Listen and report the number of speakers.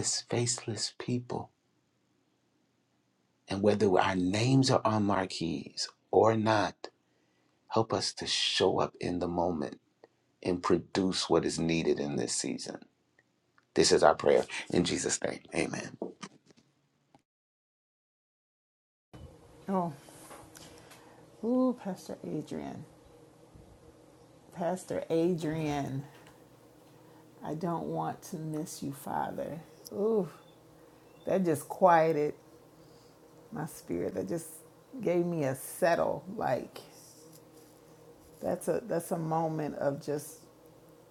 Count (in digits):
2